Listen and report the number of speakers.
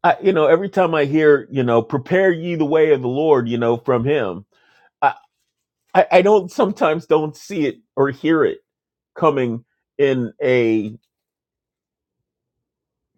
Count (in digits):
1